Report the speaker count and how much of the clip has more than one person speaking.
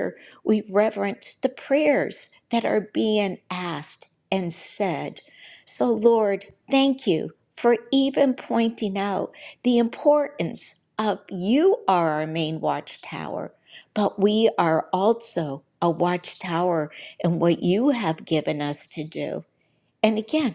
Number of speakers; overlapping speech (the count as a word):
one, no overlap